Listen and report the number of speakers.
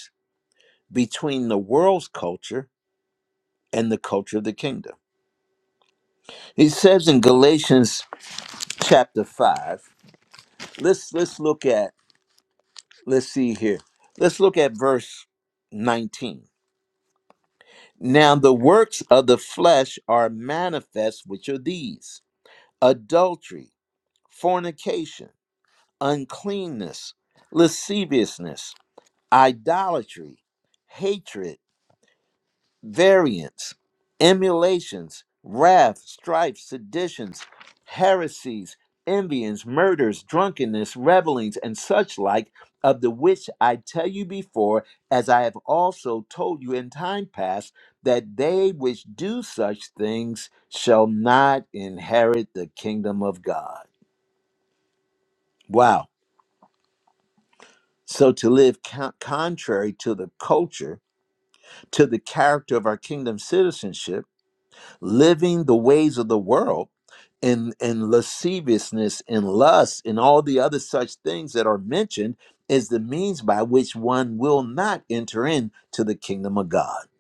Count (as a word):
one